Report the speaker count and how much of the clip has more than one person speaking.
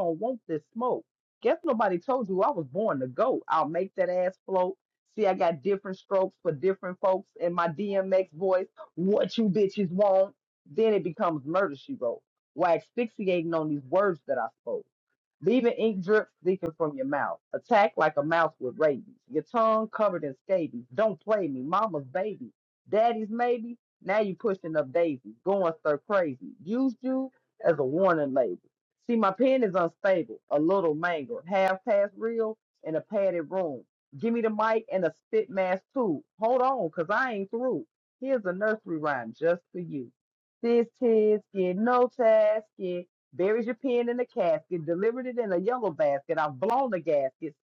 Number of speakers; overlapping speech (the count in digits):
1, no overlap